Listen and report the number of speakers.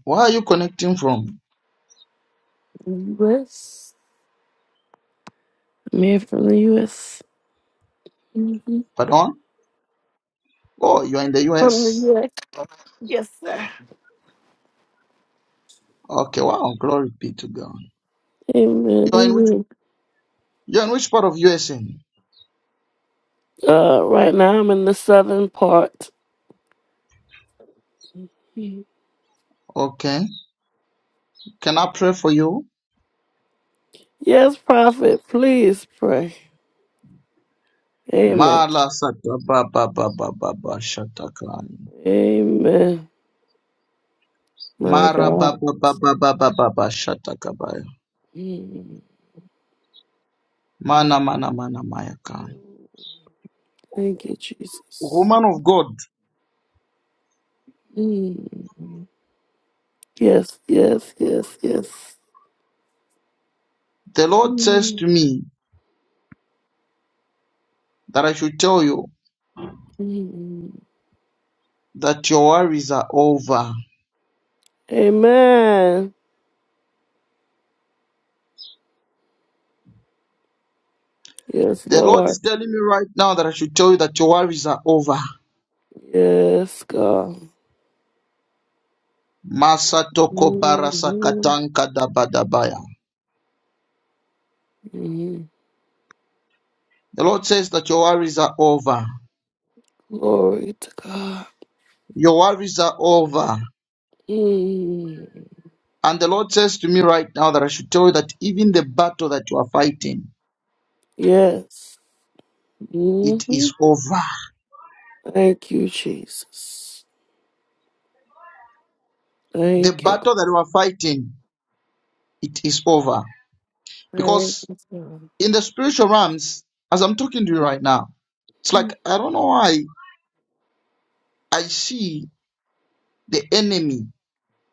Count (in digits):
2